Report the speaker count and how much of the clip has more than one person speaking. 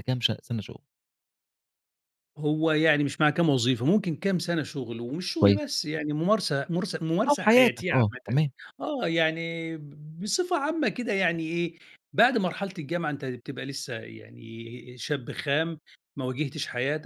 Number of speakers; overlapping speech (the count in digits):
2, about 8%